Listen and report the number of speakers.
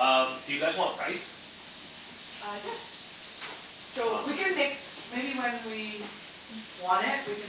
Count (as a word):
two